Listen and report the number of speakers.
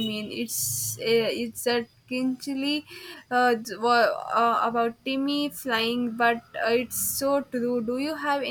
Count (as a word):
one